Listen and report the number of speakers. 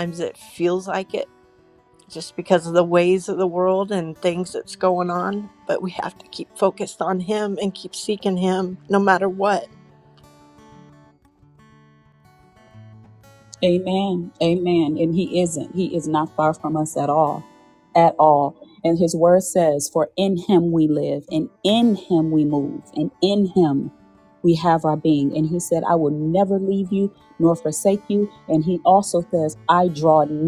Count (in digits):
2